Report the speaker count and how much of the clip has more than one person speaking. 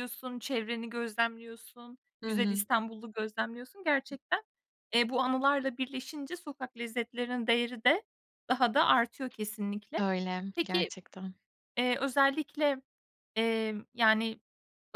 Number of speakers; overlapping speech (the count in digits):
2, about 5%